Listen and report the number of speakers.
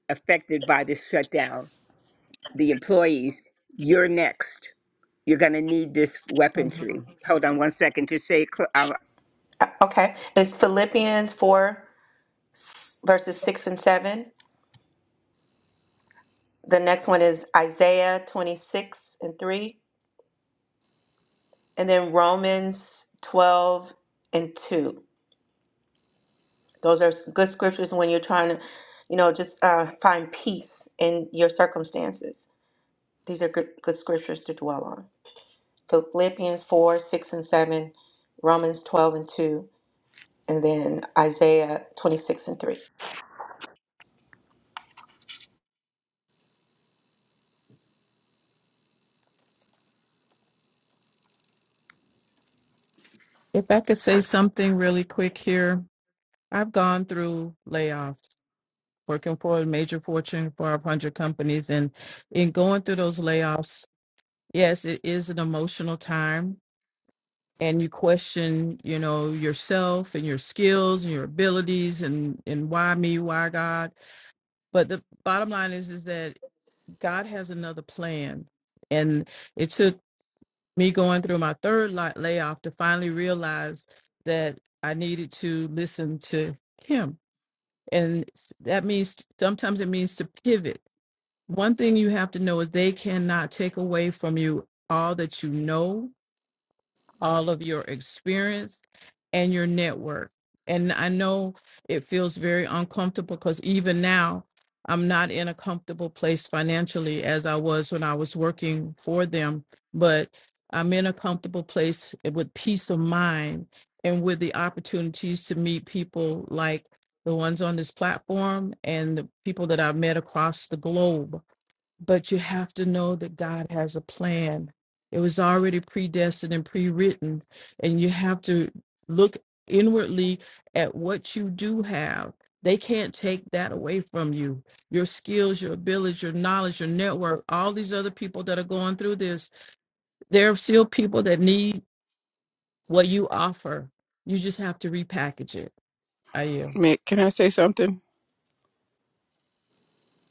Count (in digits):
4